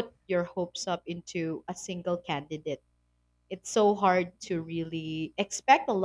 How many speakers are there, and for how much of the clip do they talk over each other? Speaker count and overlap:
1, no overlap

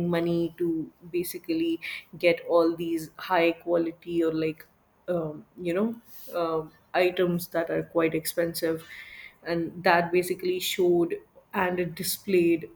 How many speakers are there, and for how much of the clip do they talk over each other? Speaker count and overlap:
1, no overlap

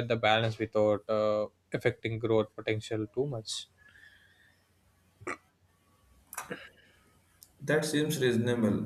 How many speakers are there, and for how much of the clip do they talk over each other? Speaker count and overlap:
2, no overlap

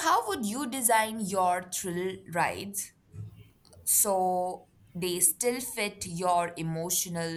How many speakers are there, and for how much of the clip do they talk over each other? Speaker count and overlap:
1, no overlap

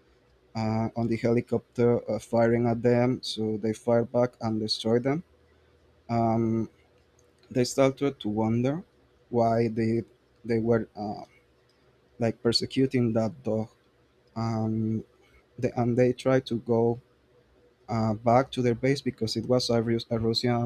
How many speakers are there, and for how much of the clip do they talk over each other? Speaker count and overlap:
1, no overlap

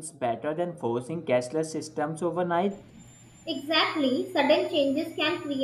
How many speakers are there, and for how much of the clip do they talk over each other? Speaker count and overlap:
2, no overlap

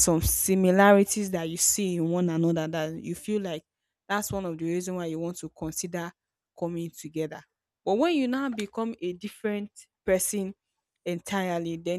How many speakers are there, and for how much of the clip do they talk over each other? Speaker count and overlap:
1, no overlap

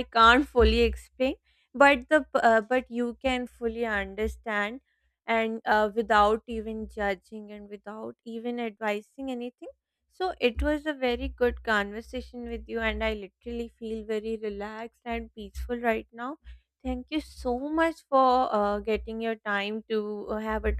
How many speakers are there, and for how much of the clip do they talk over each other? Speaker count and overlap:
1, no overlap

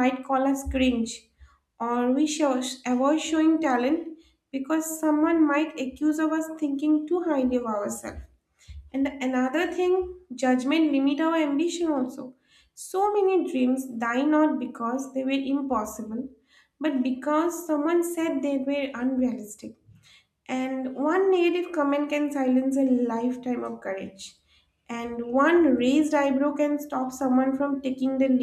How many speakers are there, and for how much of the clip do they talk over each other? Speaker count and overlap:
1, no overlap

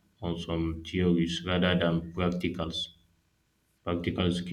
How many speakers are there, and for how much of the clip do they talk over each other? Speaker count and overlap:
1, no overlap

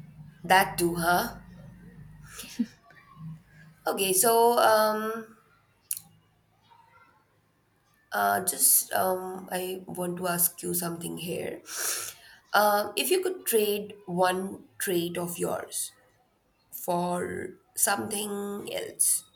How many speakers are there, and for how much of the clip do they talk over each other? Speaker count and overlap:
1, no overlap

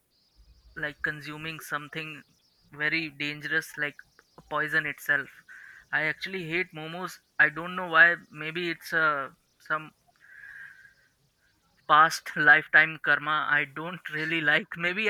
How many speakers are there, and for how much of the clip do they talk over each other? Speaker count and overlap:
1, no overlap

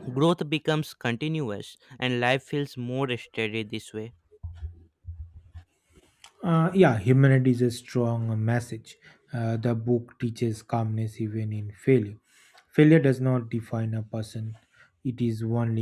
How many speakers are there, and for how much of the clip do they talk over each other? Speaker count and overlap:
2, no overlap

